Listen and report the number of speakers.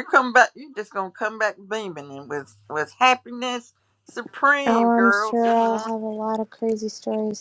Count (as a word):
two